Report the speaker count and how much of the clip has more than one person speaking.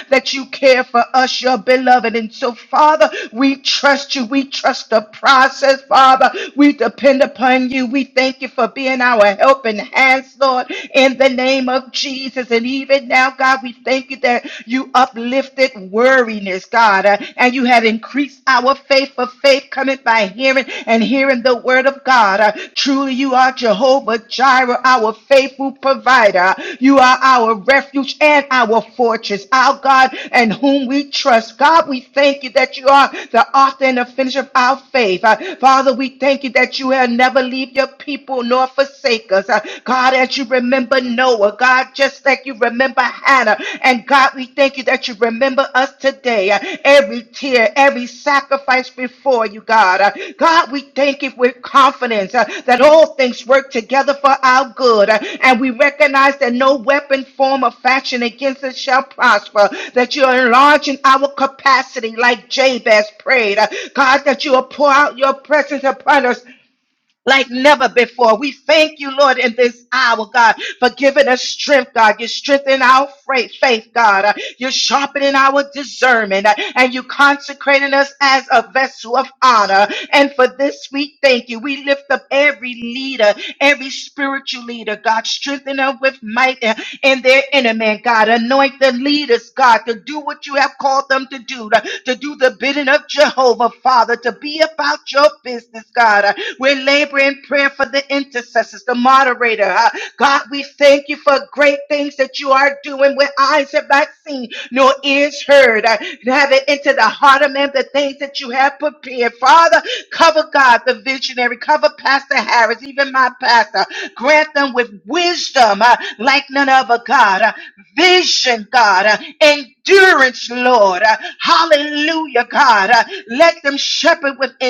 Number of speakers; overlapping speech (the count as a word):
one, no overlap